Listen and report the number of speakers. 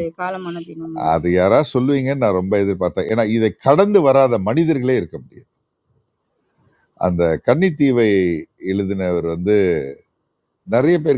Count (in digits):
2